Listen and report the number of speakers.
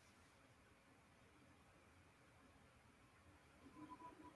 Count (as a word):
zero